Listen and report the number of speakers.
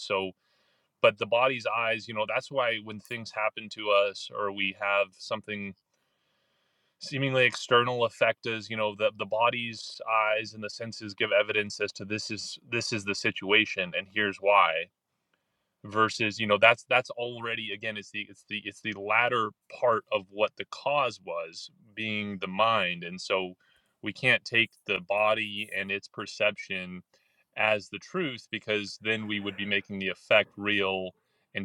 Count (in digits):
1